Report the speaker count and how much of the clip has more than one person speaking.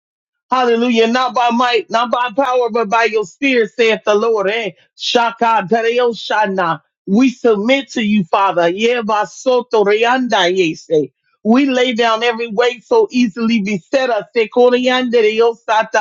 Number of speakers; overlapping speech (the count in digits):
1, no overlap